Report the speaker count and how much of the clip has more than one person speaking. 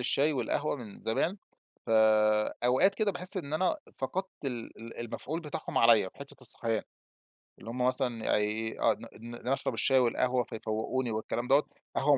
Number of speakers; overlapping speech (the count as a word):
one, no overlap